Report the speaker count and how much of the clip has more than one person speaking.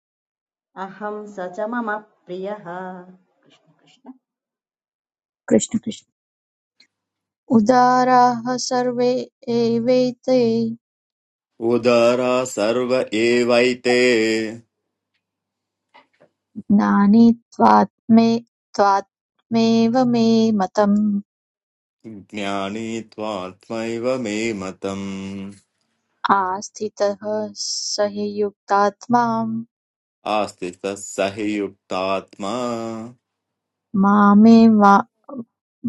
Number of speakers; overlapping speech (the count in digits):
3, no overlap